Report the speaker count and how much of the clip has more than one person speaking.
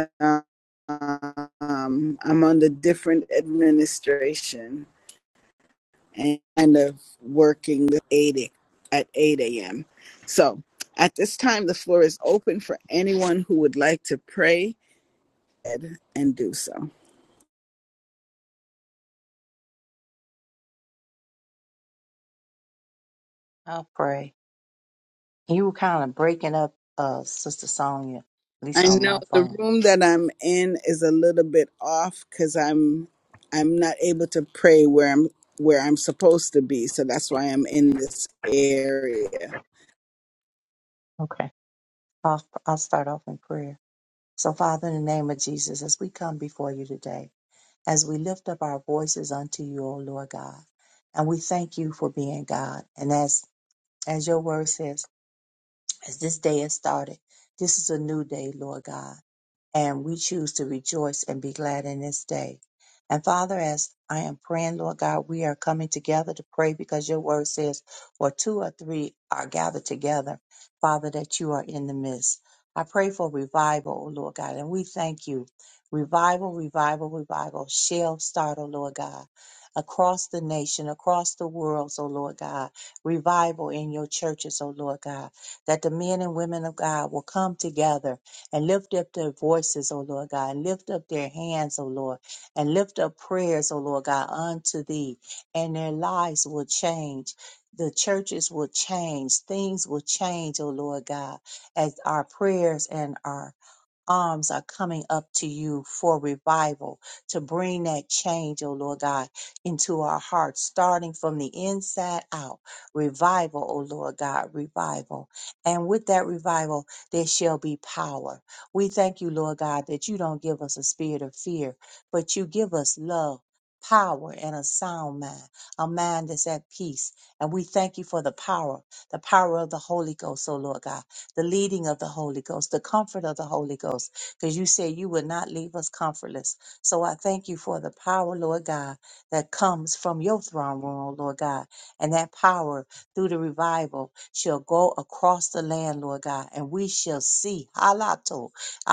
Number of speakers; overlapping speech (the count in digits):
2, about 1%